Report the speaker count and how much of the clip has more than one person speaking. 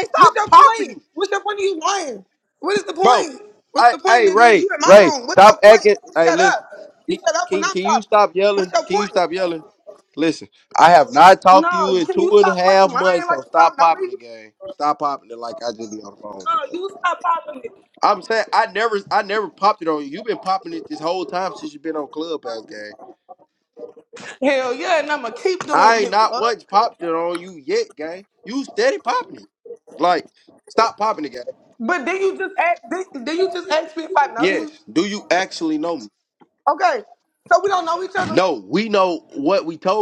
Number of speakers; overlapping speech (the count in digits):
2, about 22%